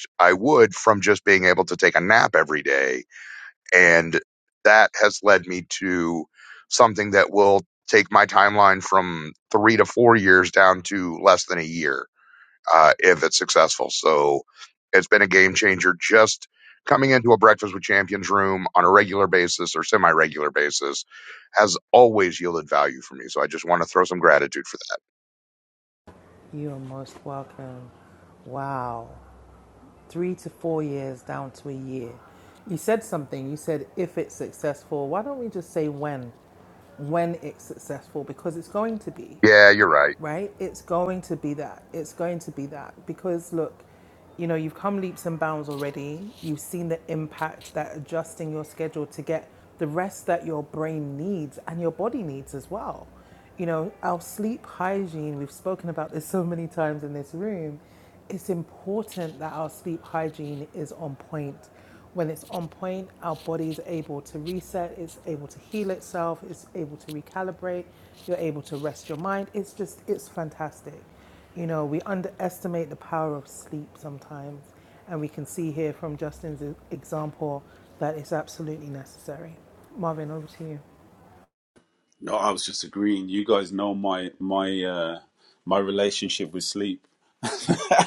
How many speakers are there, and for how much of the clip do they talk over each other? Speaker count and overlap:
3, no overlap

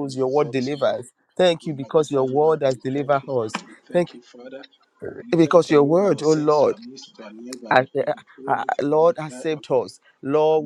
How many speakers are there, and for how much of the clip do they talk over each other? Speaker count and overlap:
2, about 64%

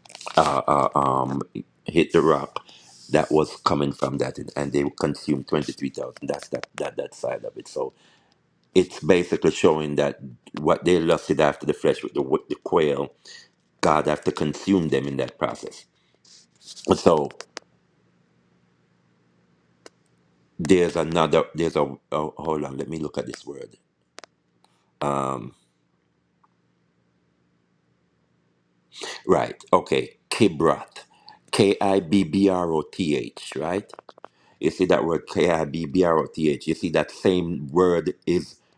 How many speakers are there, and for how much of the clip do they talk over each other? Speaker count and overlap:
1, no overlap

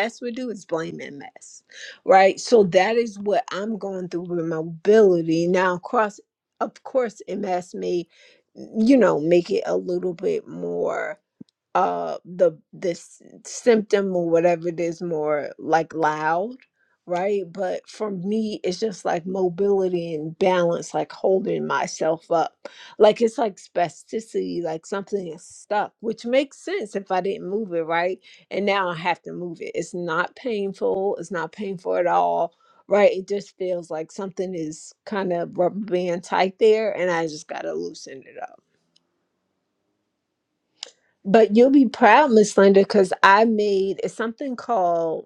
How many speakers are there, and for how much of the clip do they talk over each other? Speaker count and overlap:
1, no overlap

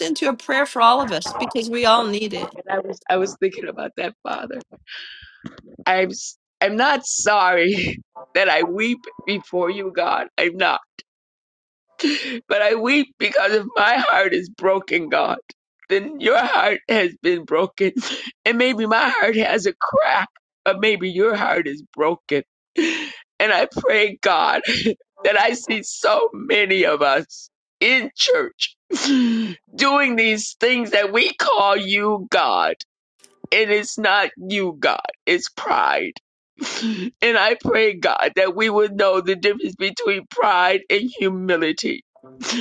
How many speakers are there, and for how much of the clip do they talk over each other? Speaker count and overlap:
2, about 1%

